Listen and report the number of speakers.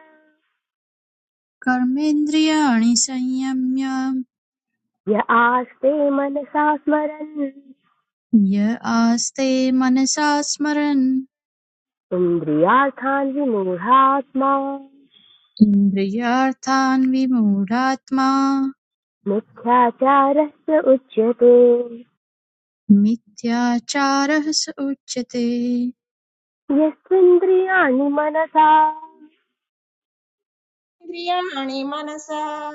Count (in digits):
3